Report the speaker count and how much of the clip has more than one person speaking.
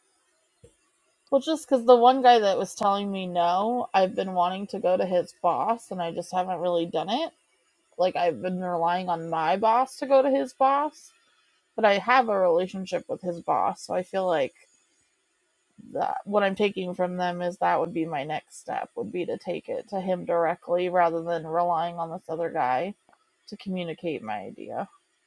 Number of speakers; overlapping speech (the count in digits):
1, no overlap